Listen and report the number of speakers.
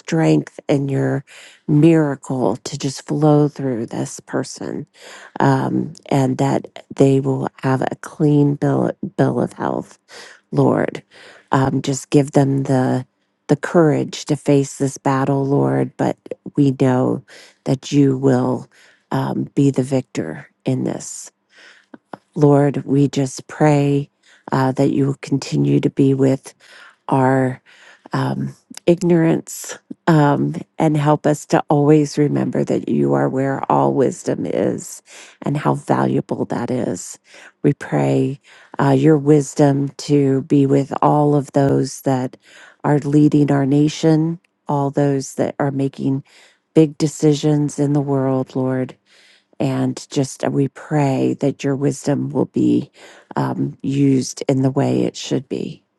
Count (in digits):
1